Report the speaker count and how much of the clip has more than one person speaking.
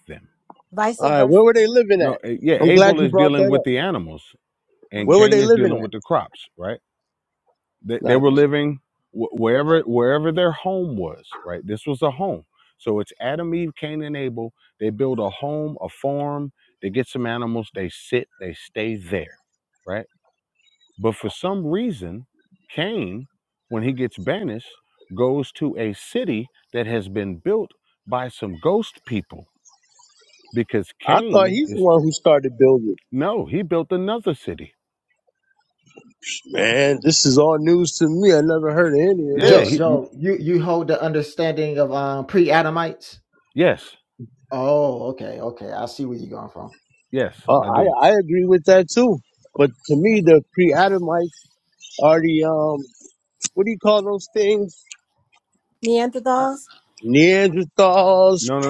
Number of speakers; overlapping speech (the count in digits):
4, about 8%